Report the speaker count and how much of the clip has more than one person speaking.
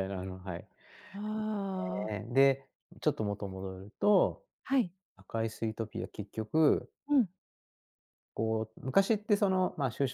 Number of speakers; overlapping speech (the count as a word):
two, no overlap